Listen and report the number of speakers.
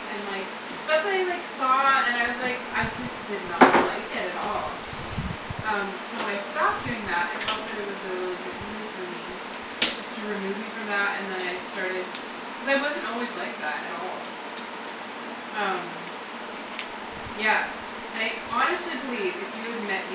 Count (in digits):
1